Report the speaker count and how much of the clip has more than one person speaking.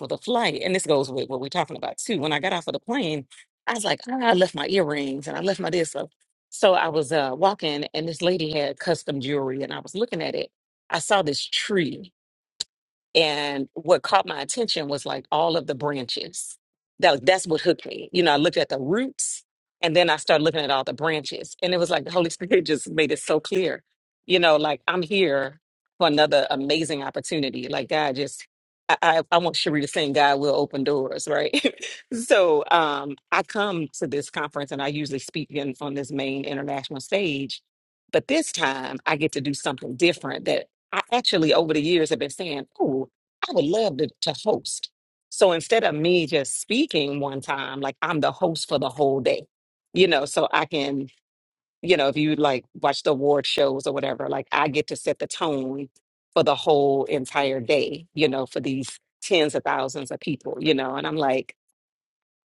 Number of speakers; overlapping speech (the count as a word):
one, no overlap